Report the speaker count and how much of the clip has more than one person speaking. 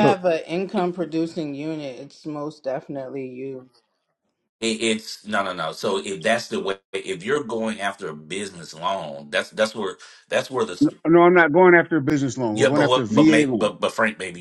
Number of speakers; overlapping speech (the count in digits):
3, about 8%